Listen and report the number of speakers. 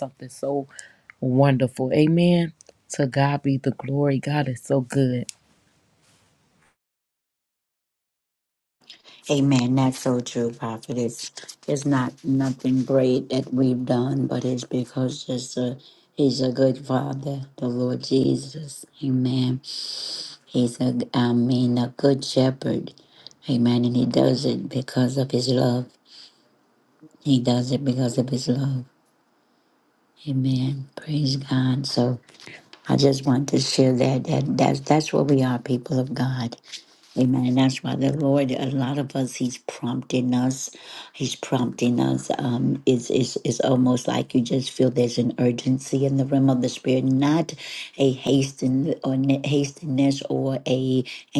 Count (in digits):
2